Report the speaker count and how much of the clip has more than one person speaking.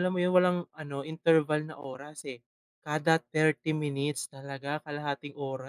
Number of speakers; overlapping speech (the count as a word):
one, no overlap